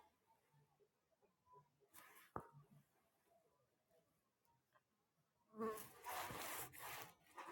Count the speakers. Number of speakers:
0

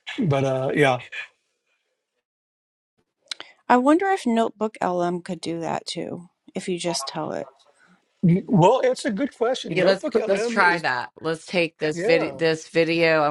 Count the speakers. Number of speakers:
3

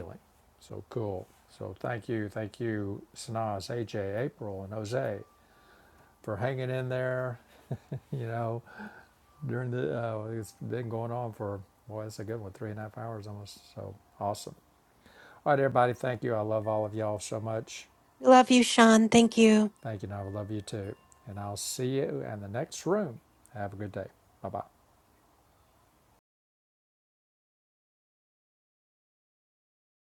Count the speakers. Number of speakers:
2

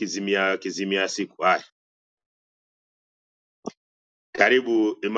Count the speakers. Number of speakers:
1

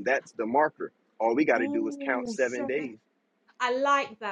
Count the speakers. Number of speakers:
2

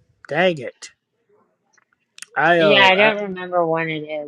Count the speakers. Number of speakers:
2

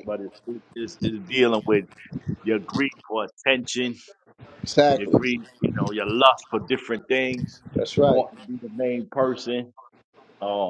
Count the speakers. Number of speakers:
2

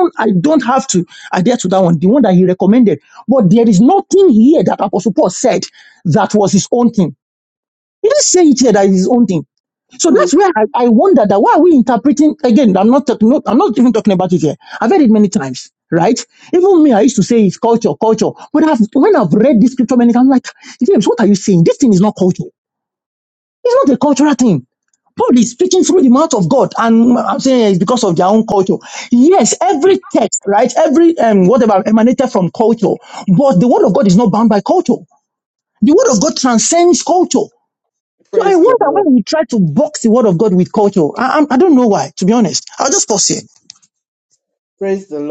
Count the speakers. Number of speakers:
2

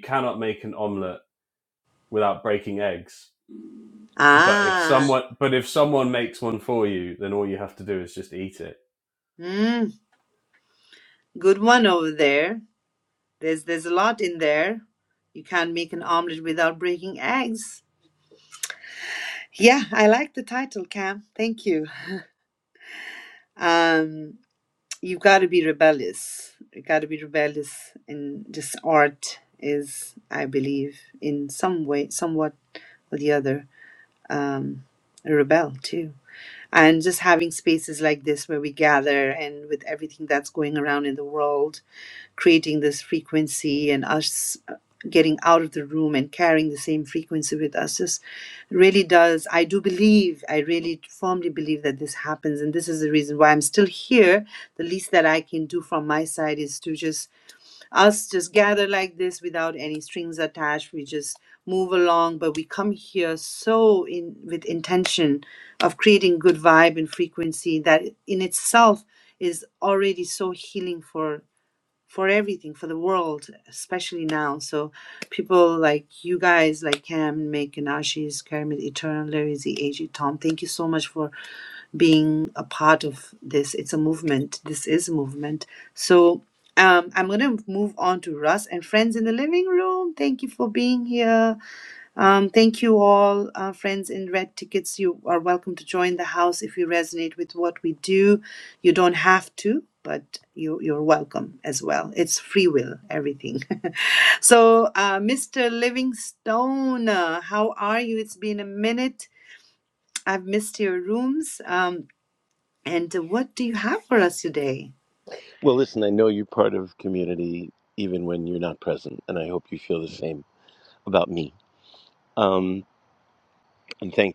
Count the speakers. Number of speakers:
3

